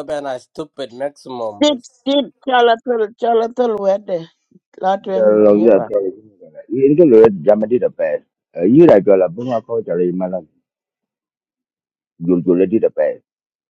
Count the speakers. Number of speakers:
3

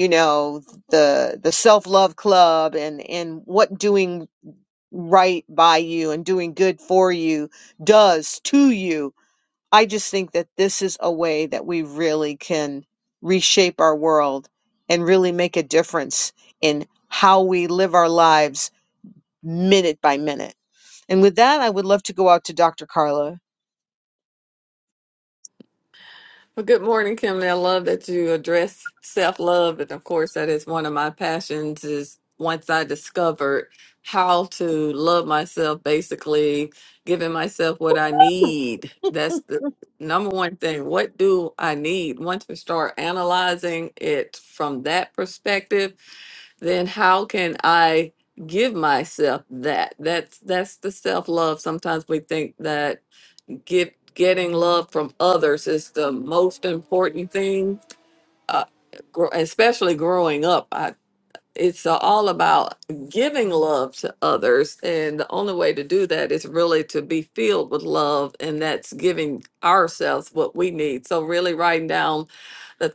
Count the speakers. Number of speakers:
2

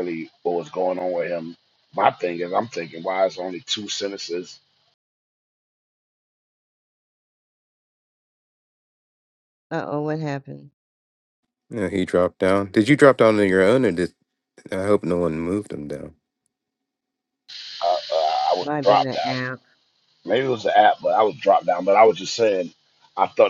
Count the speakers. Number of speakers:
3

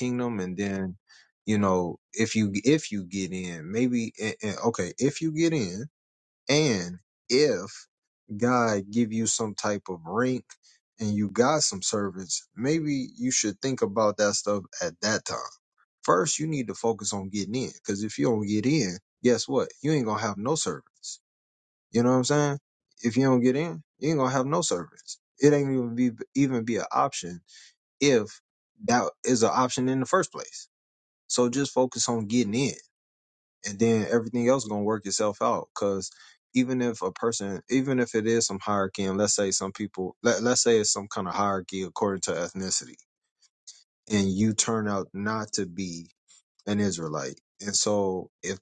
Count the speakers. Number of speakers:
1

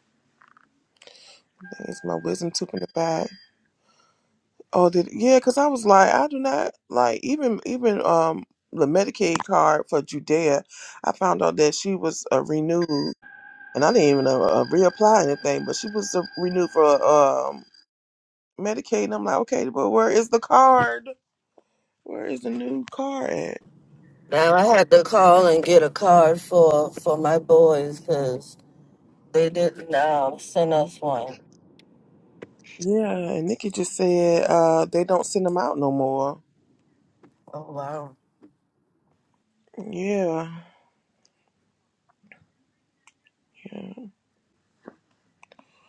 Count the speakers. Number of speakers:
2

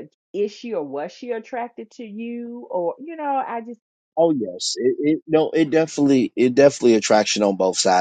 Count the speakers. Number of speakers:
2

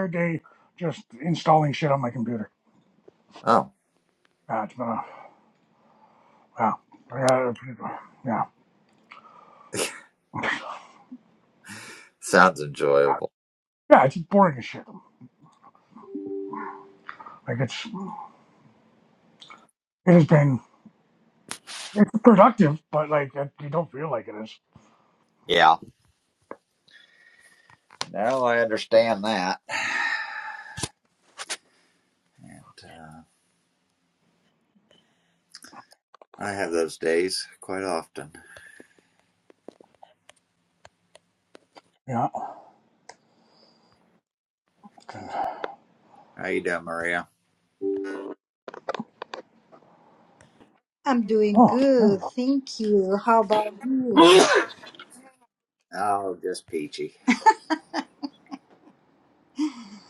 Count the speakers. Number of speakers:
3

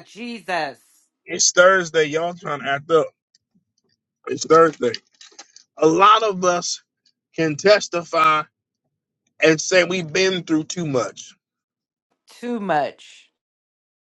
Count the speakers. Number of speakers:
2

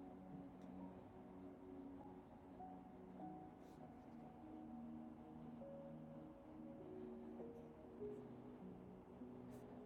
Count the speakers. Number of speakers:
0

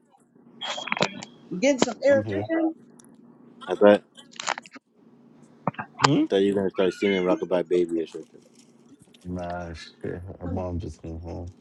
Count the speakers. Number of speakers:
3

